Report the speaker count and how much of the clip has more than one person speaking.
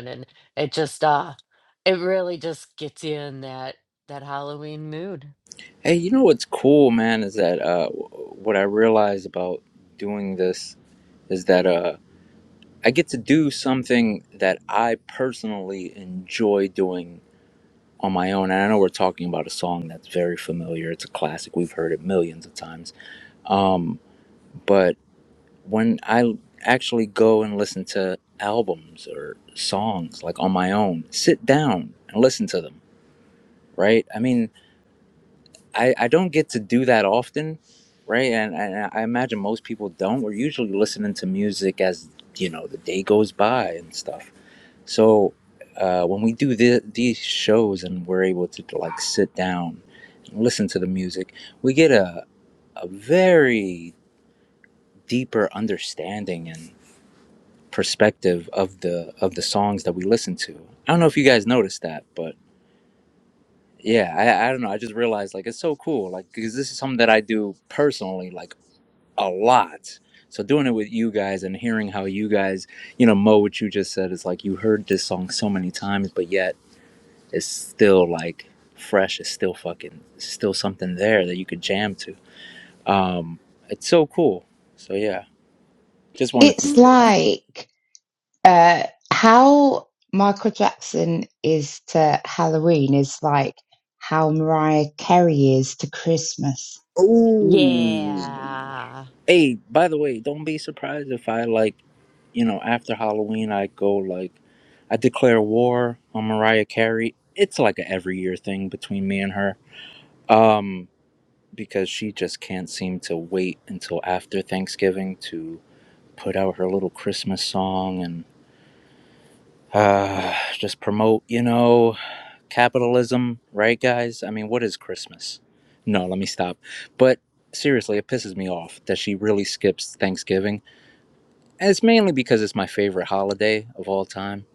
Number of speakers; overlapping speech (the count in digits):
3, about 1%